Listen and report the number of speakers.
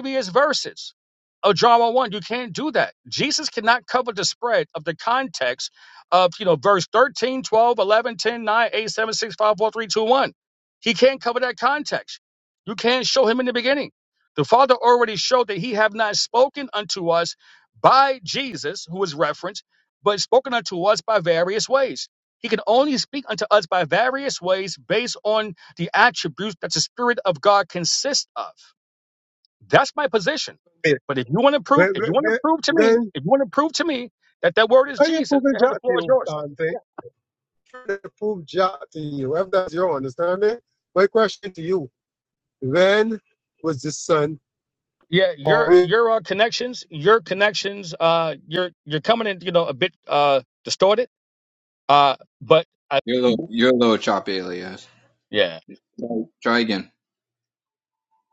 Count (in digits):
3